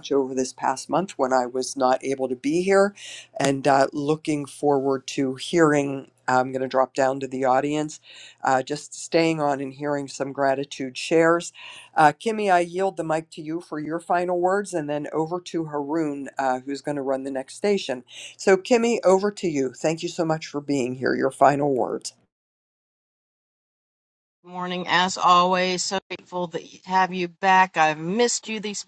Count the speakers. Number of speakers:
two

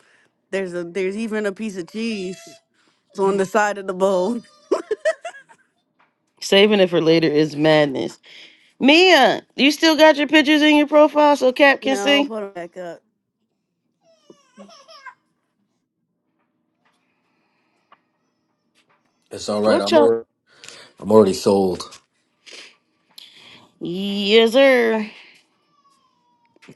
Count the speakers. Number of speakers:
three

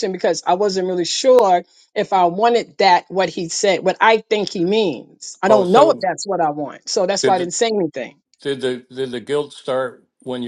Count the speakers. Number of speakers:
two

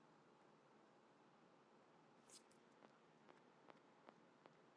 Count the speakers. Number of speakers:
zero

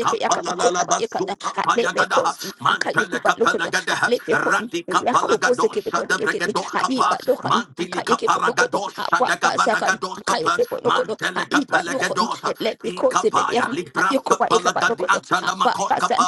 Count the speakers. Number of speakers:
two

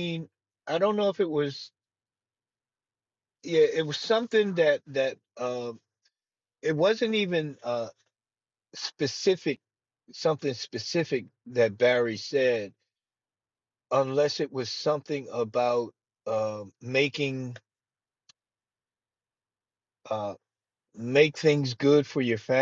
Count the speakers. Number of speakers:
one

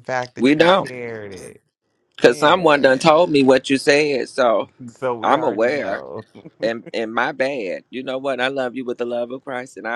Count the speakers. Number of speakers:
two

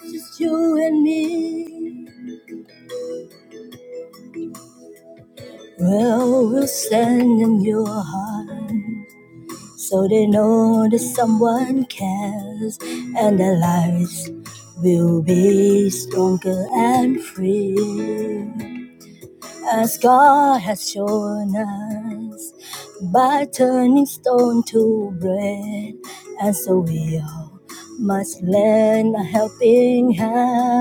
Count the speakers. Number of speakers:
one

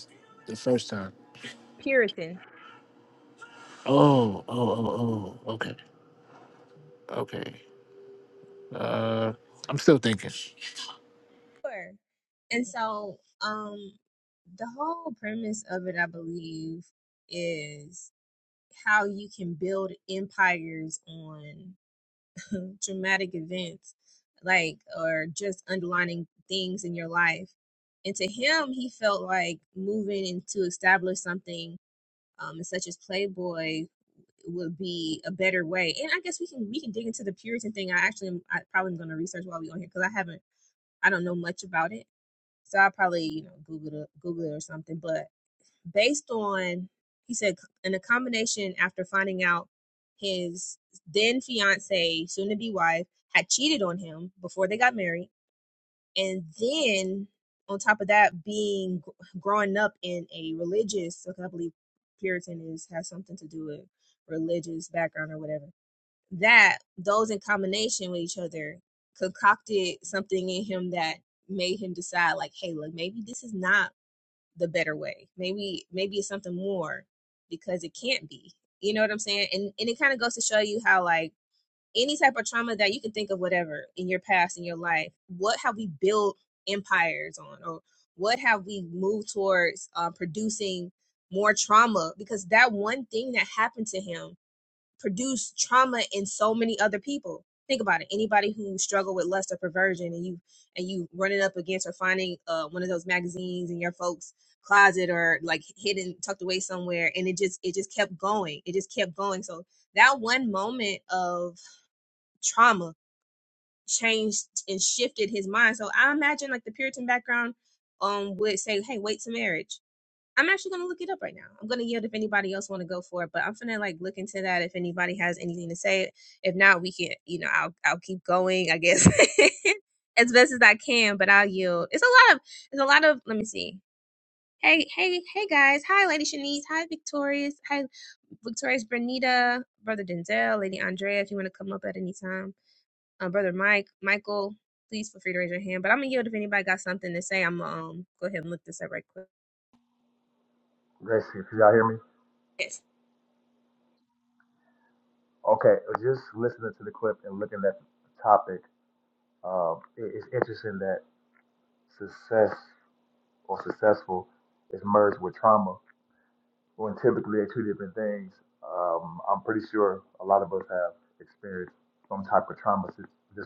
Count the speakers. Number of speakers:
three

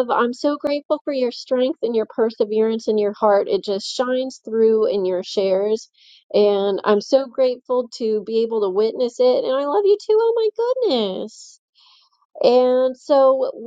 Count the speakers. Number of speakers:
one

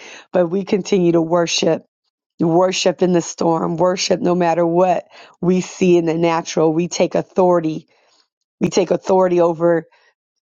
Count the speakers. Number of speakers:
one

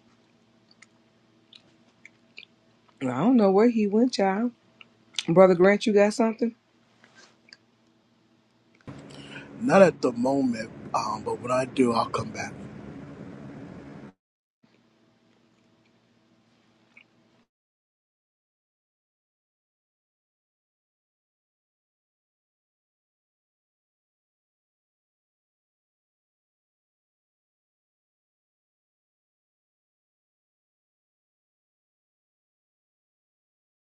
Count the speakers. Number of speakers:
two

